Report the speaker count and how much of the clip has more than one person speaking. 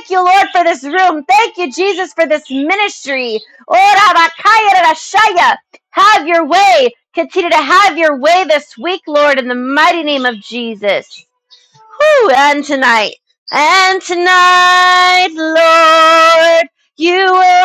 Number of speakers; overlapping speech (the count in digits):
1, no overlap